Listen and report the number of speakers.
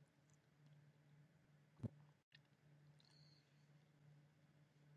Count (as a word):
zero